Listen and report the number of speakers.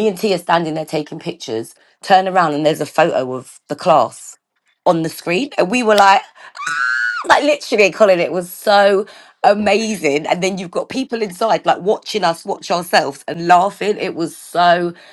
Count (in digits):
1